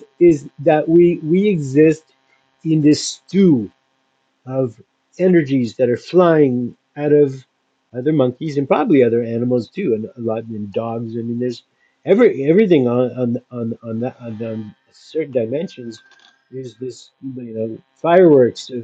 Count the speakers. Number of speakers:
1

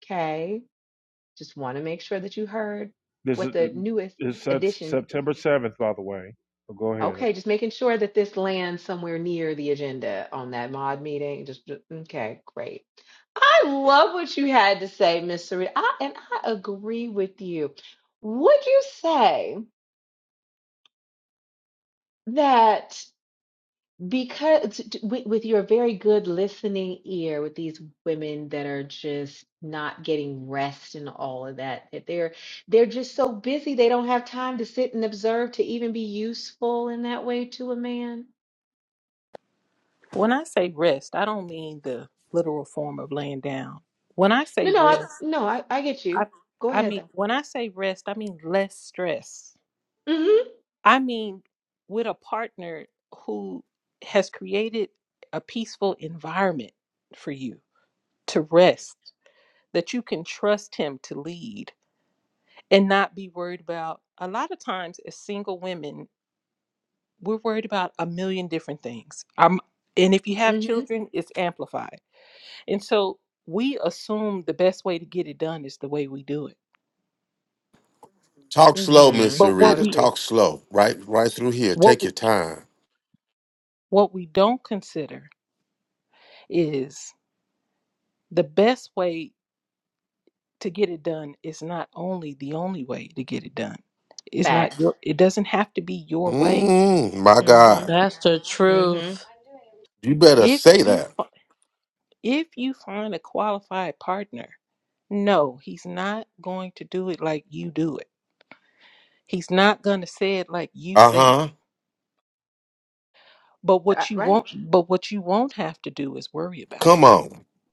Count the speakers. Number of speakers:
5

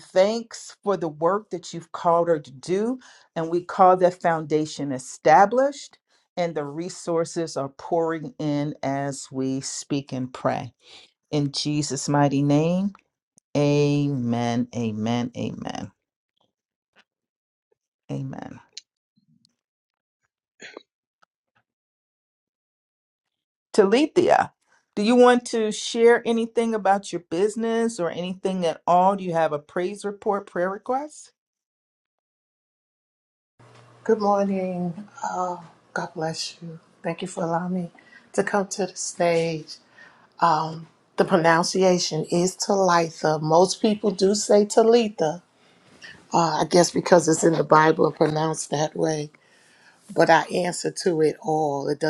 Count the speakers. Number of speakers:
2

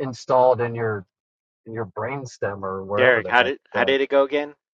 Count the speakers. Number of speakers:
2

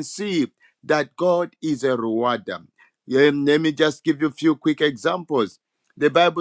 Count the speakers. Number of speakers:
1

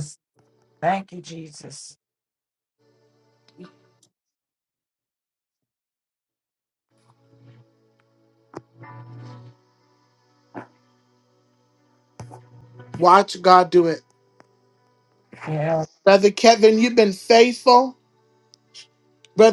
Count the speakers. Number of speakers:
2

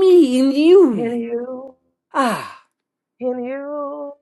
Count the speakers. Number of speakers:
2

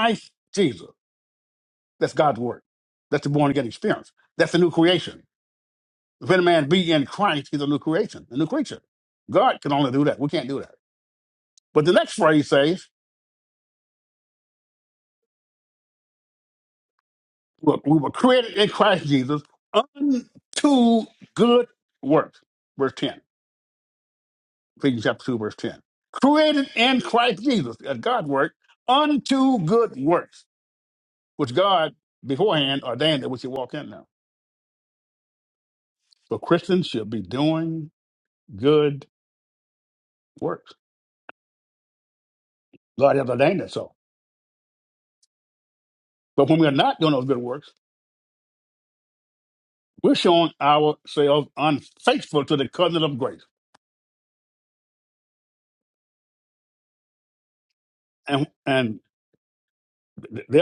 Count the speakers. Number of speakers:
1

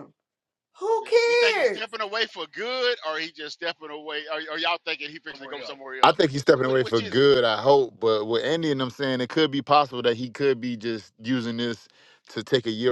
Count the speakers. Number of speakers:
3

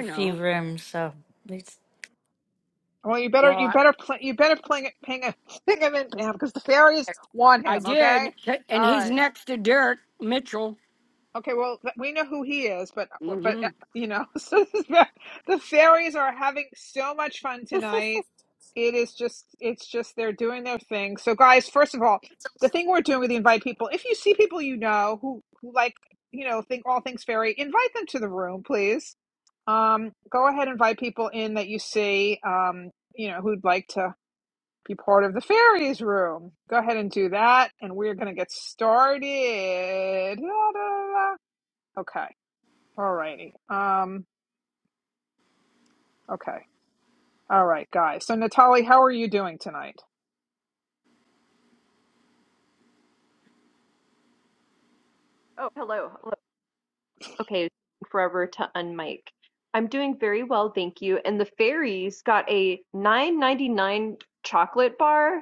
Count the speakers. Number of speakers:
4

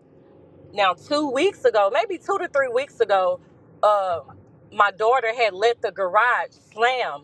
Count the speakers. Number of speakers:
1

